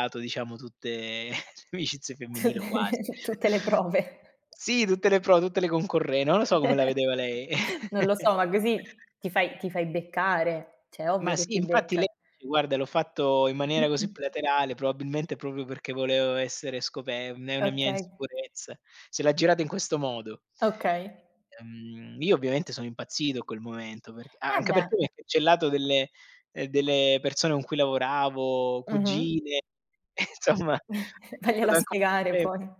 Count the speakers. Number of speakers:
2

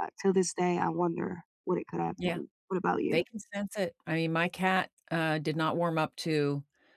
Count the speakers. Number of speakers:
2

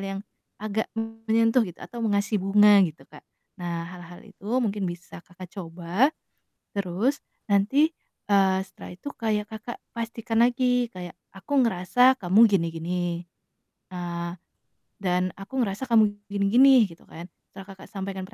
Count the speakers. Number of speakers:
1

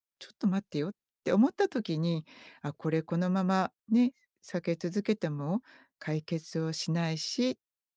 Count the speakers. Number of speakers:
1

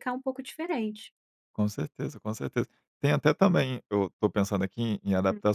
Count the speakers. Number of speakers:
2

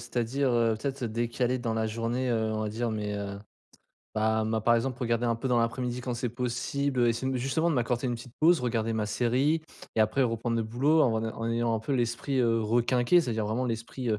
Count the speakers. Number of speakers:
1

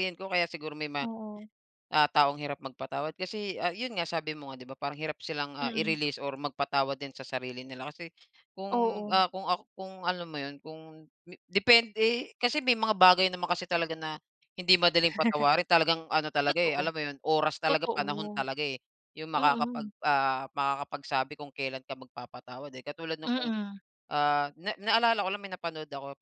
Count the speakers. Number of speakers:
2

